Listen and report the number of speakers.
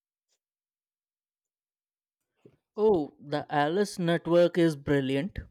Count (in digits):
1